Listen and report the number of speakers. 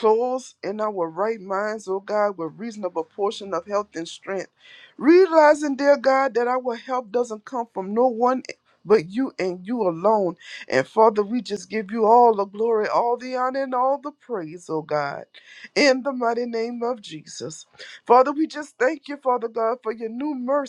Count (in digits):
1